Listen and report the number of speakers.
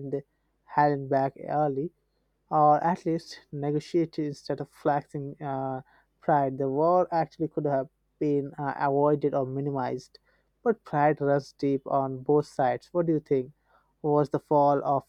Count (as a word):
one